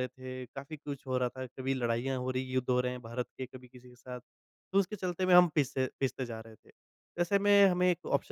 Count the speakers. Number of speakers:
one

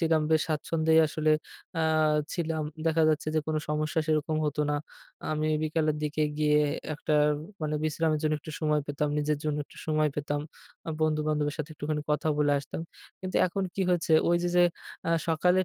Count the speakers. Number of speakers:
one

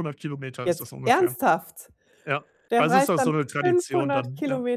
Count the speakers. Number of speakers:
two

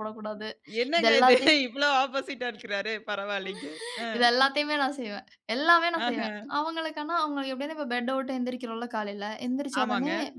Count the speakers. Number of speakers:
two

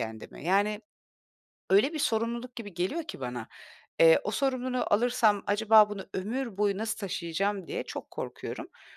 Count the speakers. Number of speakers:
one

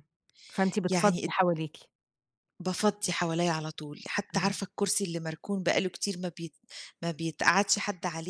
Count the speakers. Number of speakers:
two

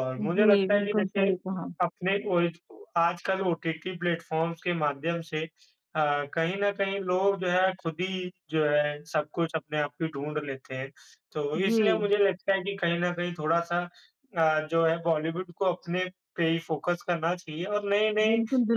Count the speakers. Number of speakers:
two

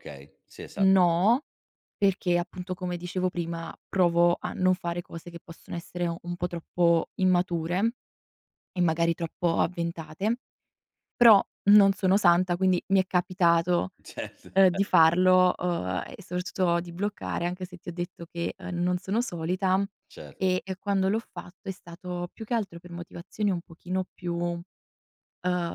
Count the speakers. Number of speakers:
two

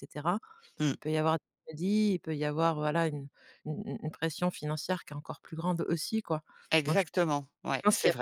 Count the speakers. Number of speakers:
two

